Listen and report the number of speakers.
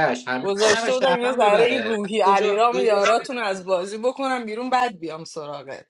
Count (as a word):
two